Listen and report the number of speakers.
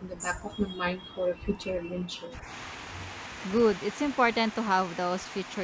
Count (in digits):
2